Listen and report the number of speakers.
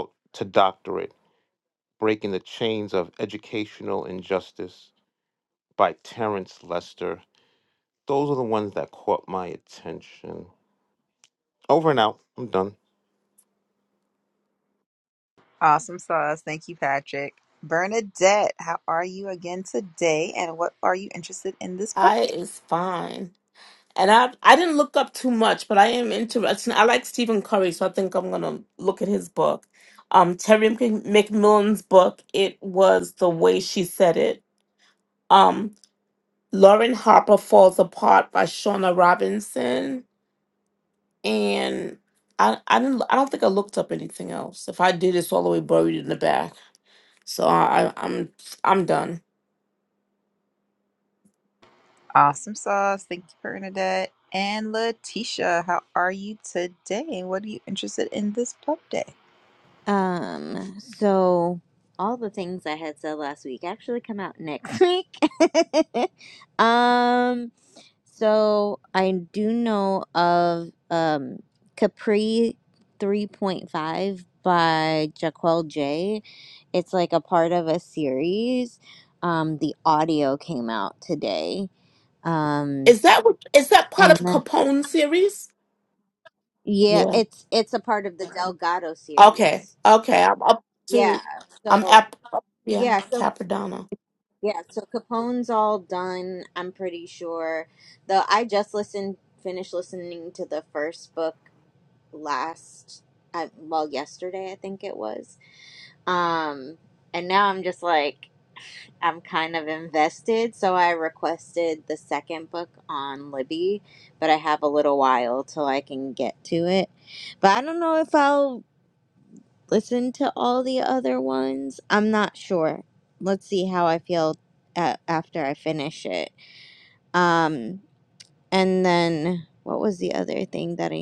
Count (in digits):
4